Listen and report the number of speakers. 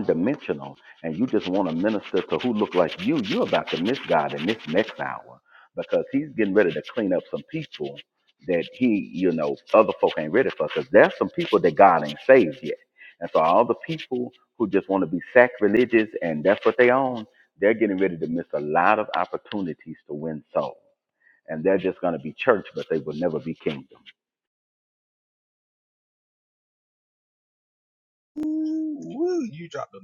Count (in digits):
2